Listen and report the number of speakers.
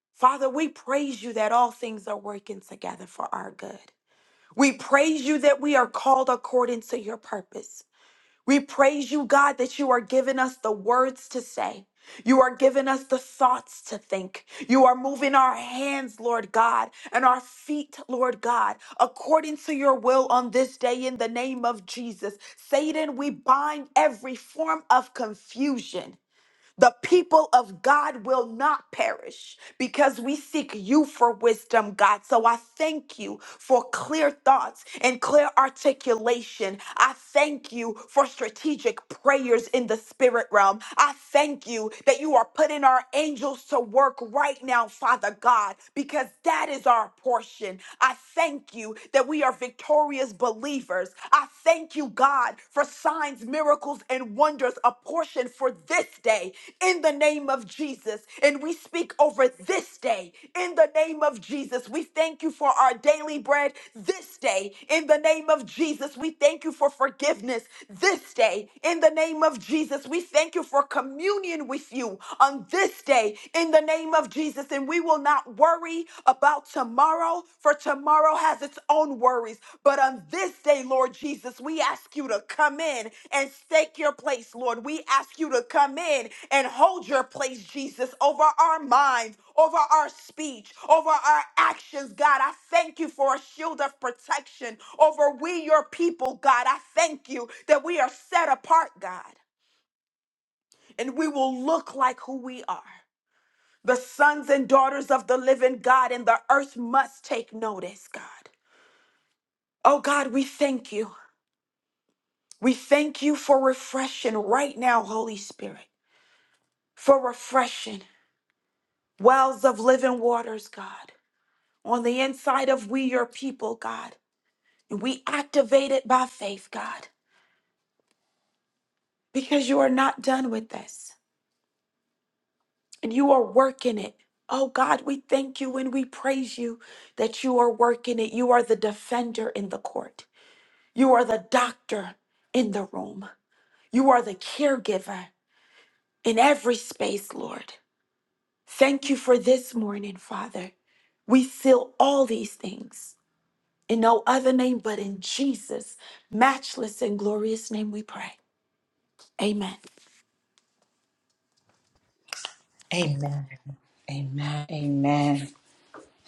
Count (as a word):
two